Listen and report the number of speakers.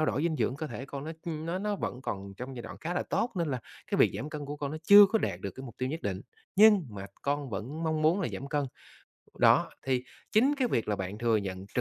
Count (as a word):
one